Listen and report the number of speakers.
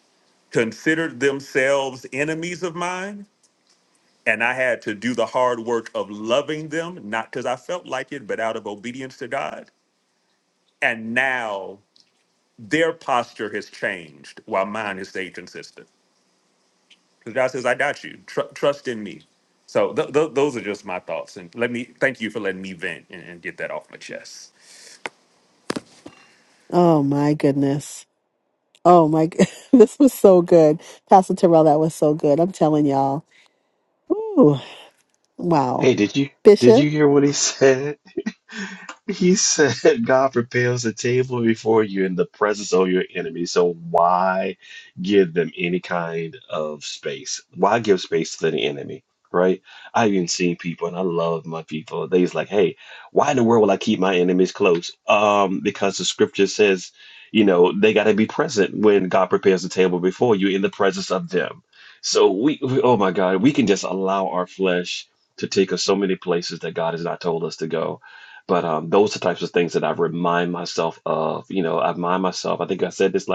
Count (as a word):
three